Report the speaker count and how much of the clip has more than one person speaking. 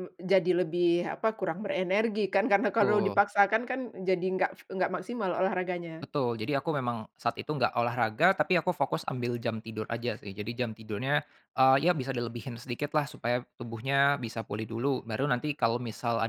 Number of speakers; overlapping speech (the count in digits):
2, about 3%